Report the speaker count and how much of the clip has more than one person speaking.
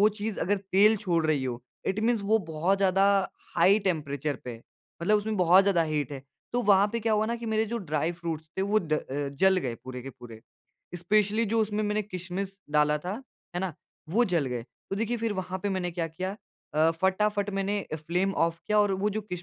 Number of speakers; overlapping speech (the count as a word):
one, no overlap